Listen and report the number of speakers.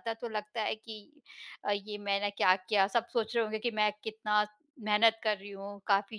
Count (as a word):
one